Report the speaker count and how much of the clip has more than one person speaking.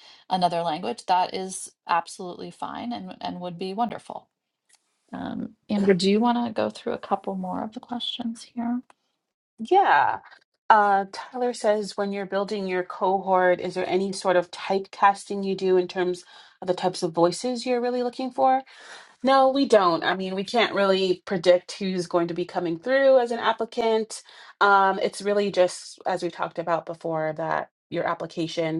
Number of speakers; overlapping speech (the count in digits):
2, no overlap